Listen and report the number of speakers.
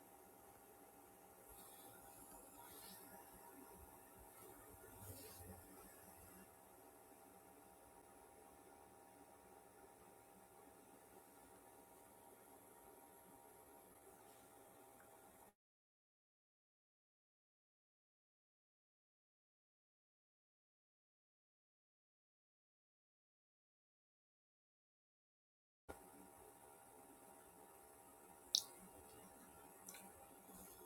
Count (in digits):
0